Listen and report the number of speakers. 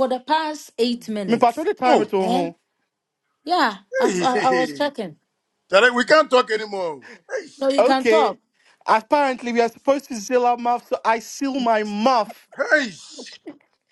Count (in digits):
3